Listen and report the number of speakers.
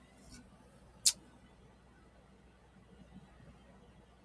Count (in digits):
0